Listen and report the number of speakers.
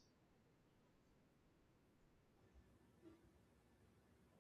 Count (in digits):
0